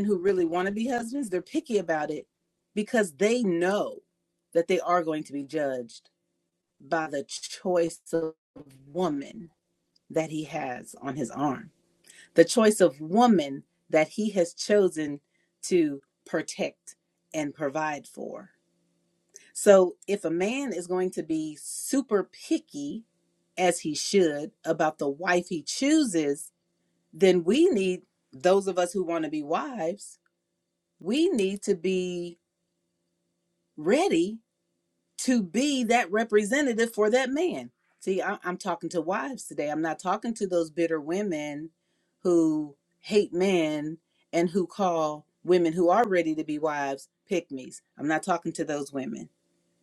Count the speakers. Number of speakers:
1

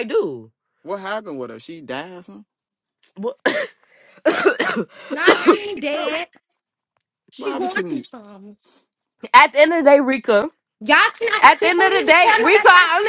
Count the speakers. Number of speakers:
3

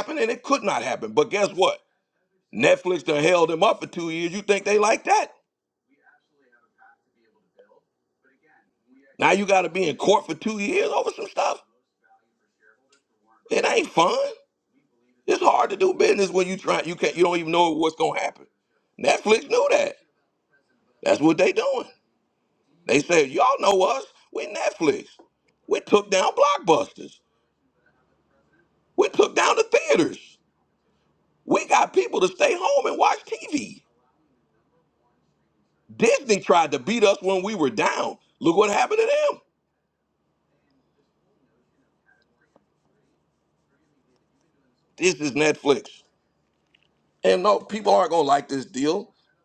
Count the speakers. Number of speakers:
1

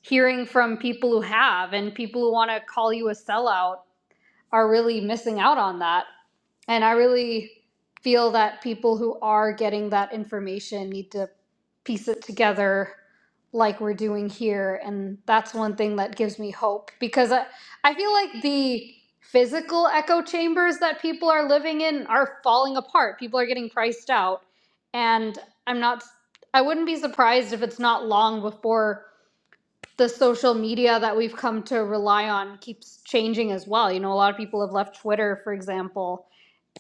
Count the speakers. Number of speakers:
1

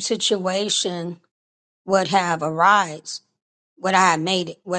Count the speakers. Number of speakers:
1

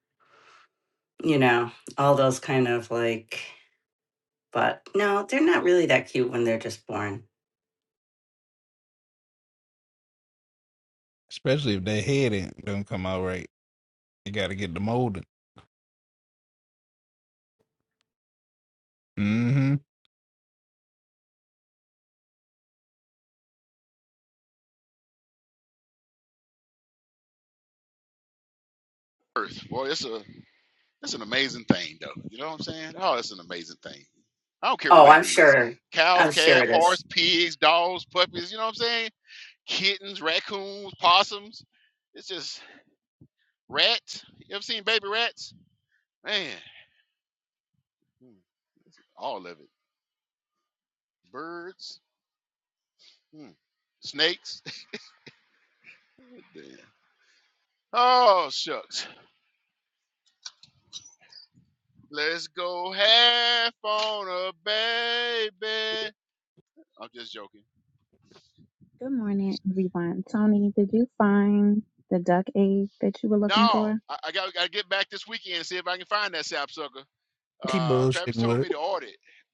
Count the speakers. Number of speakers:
4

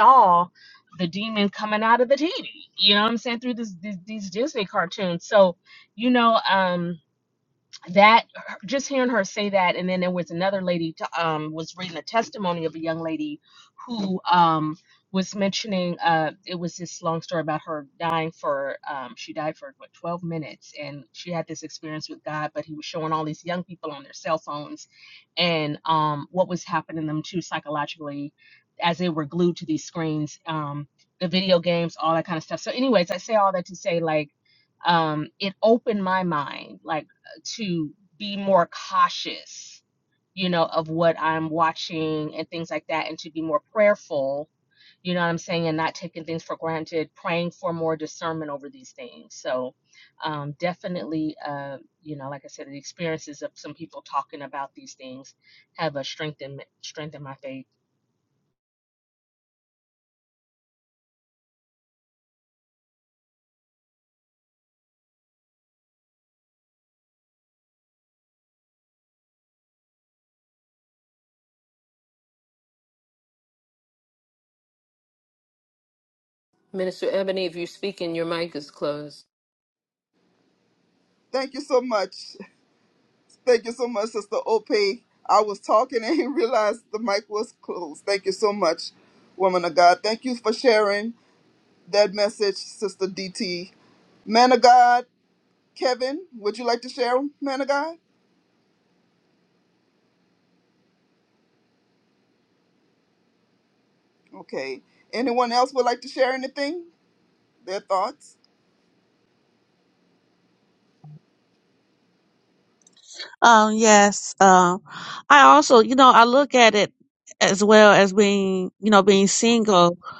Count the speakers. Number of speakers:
4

